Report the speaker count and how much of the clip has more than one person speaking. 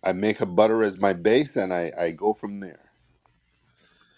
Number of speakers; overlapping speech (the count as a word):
one, no overlap